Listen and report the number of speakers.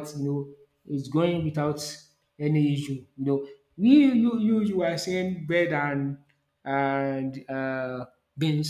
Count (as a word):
one